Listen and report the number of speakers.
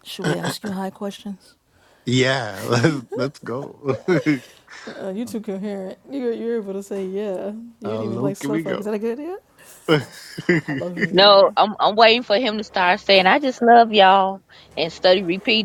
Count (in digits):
3